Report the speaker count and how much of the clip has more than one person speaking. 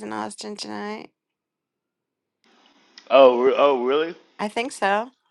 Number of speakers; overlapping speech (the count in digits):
2, no overlap